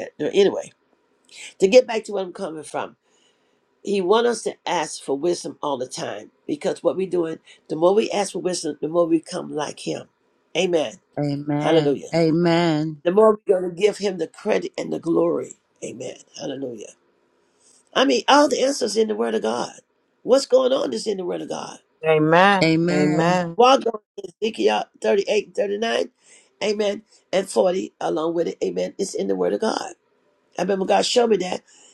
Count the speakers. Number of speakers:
three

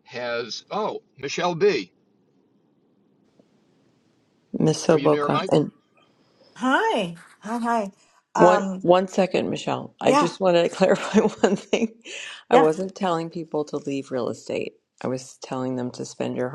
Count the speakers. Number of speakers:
three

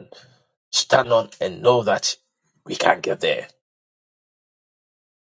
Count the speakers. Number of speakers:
one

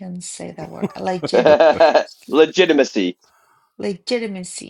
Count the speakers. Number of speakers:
two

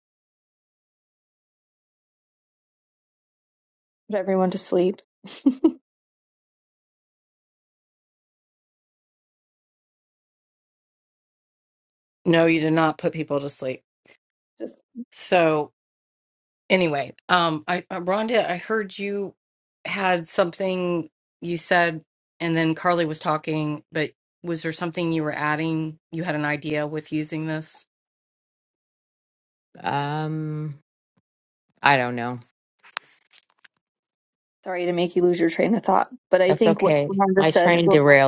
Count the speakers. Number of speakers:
three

